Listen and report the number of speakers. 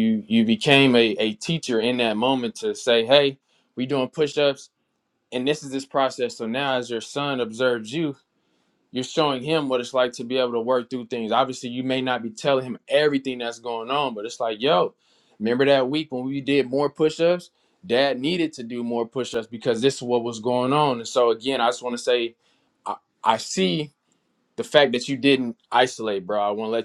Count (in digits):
1